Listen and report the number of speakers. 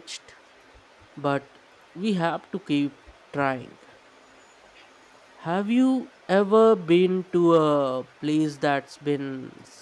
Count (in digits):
1